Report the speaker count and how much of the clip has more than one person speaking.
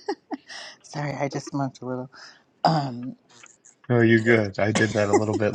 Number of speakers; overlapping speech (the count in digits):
2, no overlap